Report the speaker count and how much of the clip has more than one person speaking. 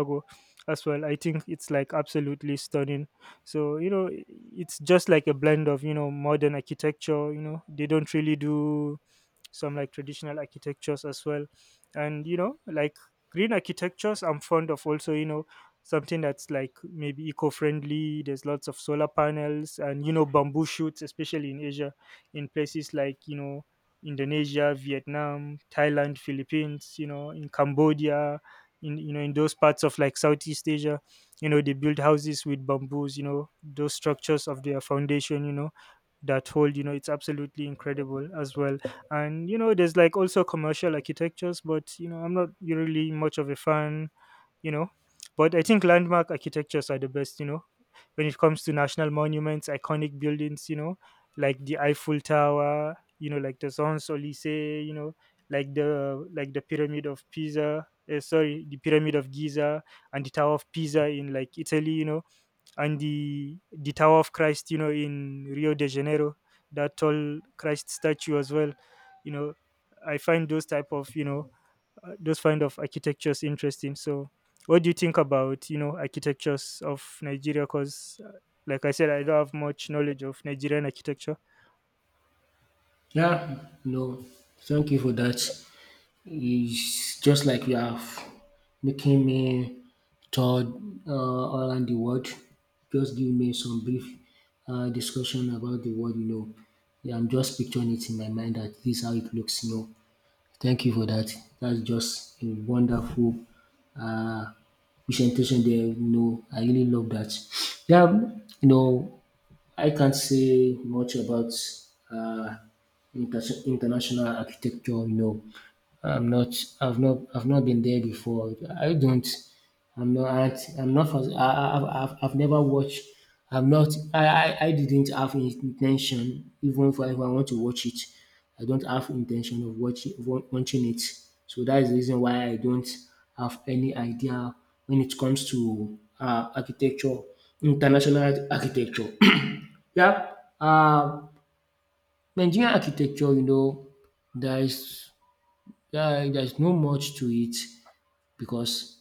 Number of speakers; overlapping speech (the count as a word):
two, no overlap